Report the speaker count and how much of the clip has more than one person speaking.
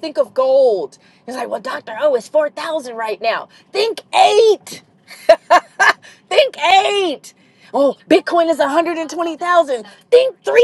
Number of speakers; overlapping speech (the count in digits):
1, no overlap